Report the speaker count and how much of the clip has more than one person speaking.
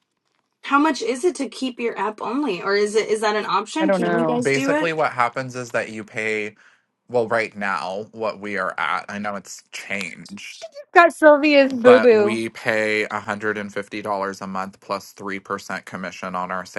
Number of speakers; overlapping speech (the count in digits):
3, about 10%